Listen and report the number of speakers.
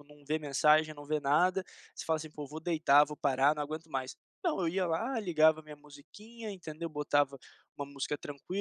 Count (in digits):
1